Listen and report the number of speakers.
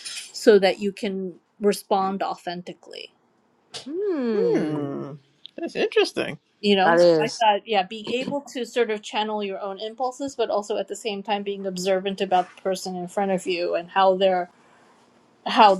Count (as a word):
three